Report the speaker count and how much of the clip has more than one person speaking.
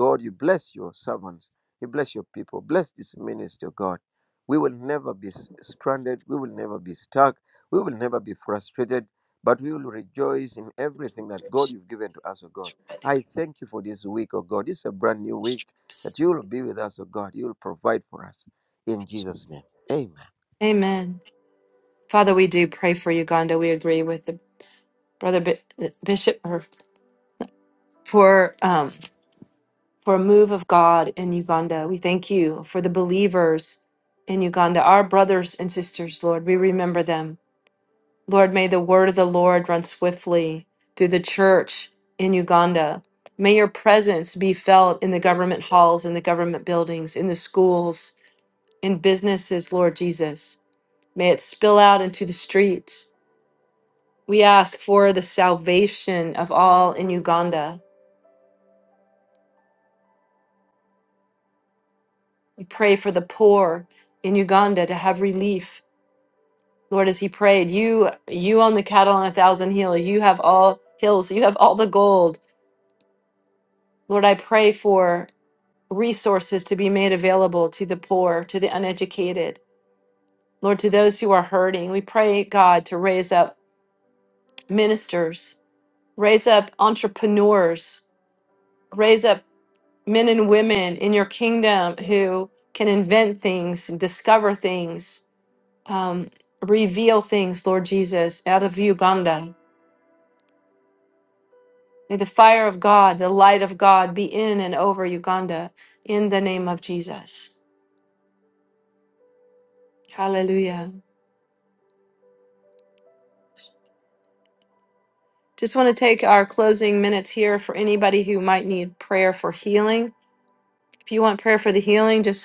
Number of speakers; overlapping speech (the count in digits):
2, under 1%